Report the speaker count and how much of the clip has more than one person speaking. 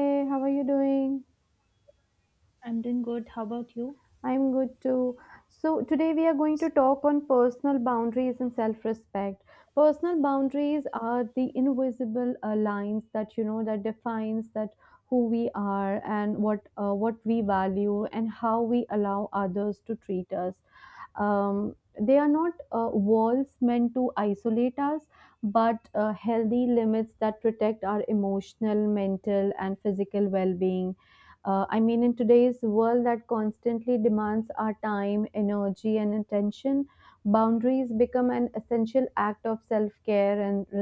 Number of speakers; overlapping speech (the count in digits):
2, no overlap